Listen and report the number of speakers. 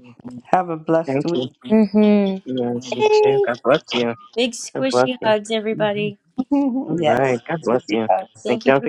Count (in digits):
3